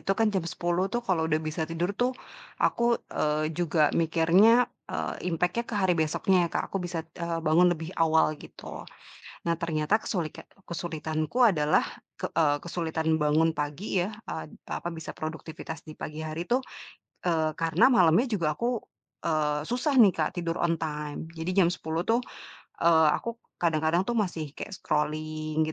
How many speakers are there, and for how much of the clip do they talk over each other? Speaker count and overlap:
1, no overlap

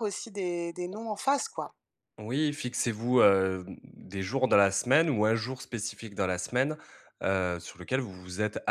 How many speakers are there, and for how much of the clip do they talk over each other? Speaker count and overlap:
2, no overlap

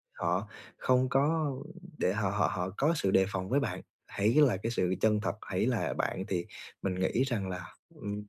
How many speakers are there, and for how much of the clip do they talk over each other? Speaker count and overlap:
1, no overlap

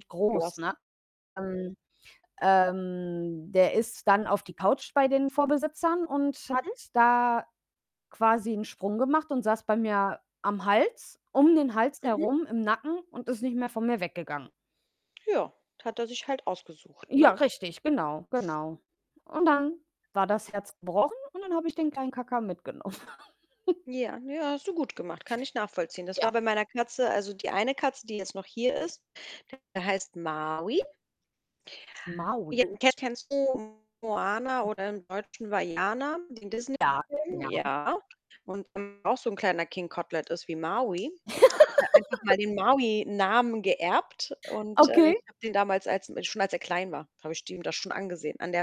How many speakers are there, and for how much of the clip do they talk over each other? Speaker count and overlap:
2, about 4%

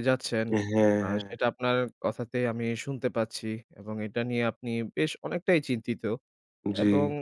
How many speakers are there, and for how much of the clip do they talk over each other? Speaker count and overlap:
2, about 10%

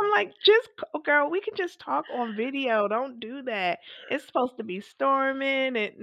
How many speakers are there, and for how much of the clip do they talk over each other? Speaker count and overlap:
1, no overlap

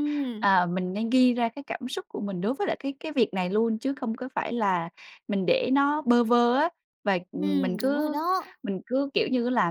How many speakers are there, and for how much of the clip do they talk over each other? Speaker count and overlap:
2, about 9%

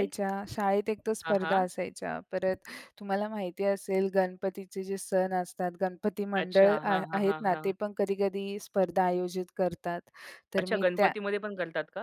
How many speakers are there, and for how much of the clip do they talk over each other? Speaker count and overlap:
2, about 20%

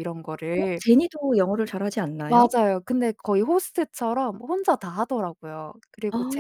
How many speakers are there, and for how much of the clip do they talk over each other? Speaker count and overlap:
2, about 9%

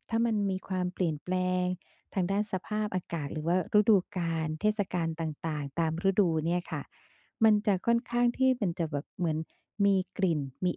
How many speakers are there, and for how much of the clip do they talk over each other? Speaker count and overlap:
1, no overlap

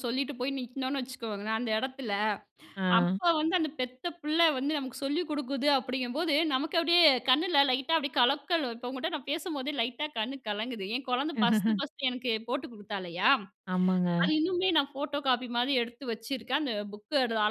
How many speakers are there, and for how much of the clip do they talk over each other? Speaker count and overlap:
2, about 2%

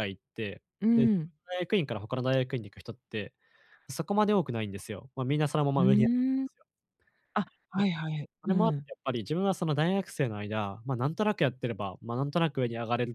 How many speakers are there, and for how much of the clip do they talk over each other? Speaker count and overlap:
2, about 6%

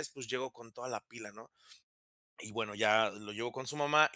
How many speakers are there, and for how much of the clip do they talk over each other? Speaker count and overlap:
1, no overlap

